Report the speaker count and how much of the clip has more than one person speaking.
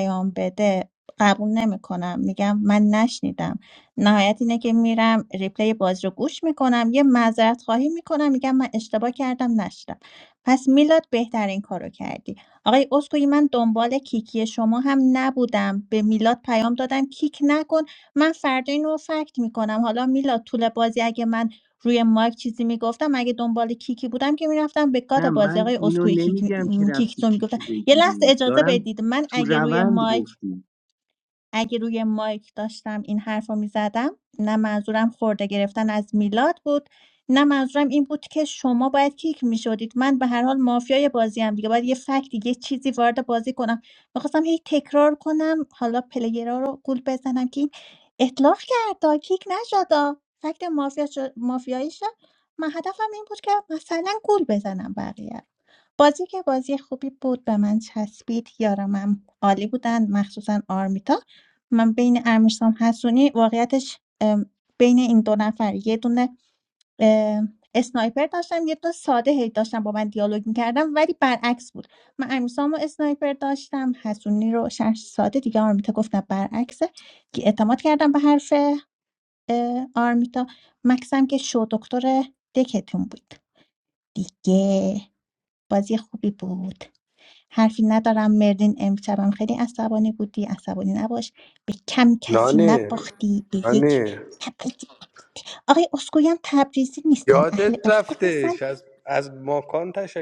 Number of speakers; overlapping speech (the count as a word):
three, about 6%